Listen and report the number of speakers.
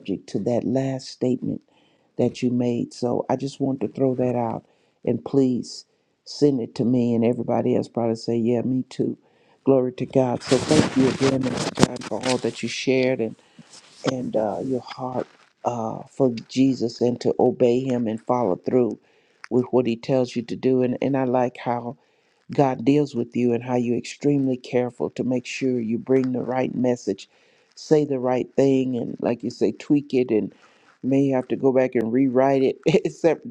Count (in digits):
1